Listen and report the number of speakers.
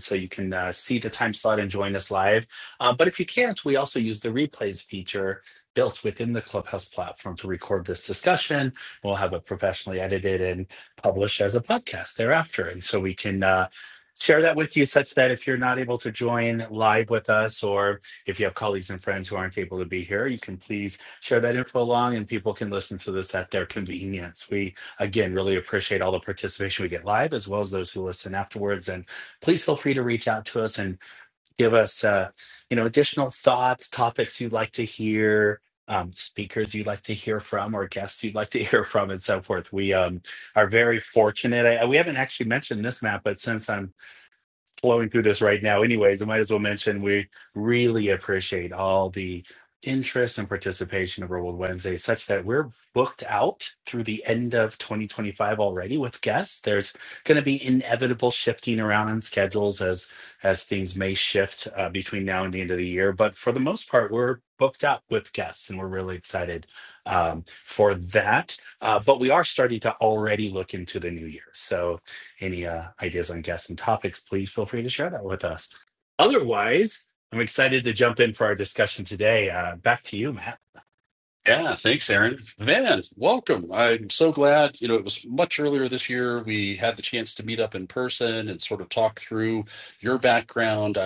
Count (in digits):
2